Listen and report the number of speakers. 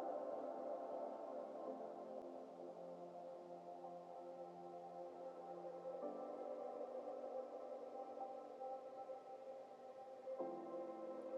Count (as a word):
zero